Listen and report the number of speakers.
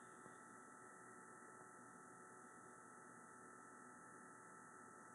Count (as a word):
zero